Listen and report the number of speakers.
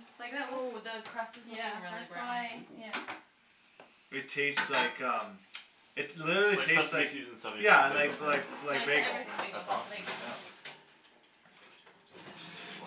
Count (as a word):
four